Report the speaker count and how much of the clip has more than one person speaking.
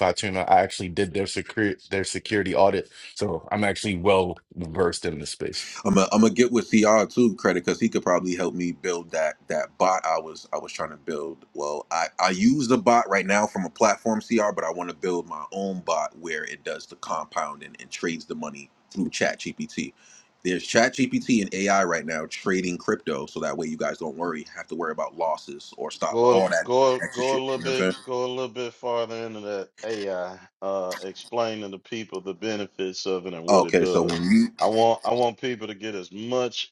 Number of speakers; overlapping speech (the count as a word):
three, about 7%